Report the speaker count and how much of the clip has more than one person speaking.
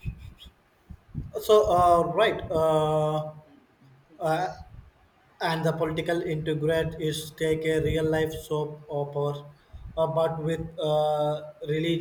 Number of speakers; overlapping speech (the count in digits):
1, no overlap